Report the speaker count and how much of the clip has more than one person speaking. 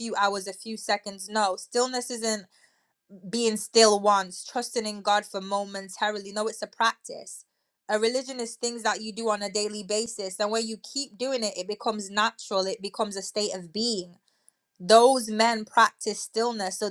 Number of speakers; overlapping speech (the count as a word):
one, no overlap